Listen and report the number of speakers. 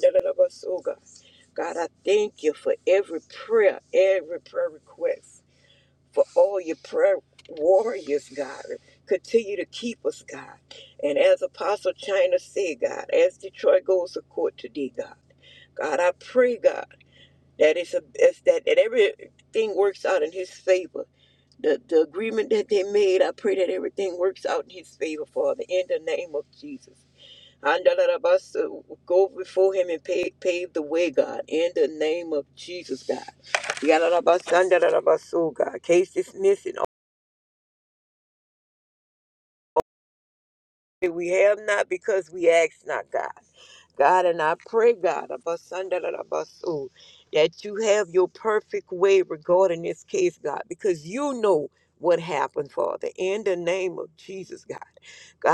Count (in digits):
1